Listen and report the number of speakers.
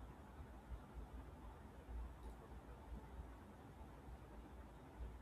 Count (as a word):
zero